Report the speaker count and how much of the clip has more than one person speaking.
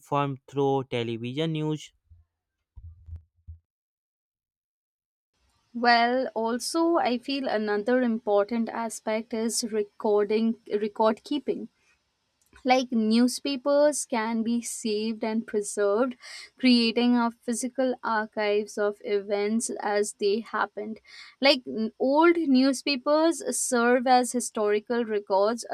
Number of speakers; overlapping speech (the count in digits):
2, no overlap